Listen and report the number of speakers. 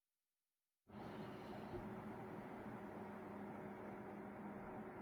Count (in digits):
0